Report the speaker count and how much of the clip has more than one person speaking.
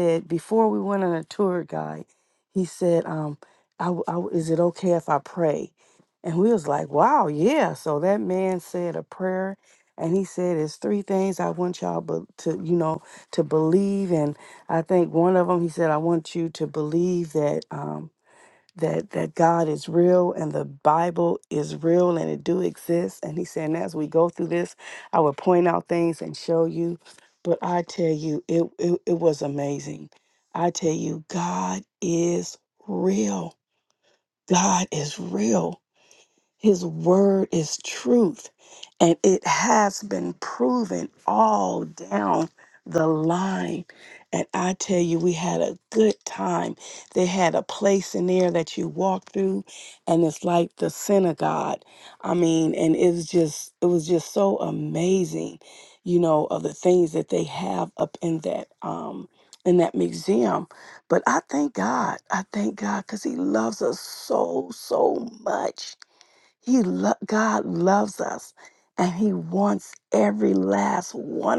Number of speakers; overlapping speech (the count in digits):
1, no overlap